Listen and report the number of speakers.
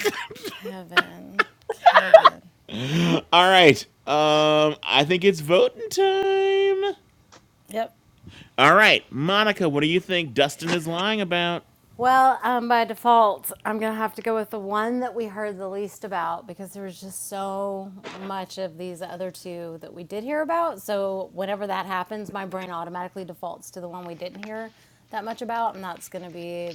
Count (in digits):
2